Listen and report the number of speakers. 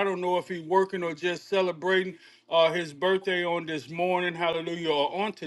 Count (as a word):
one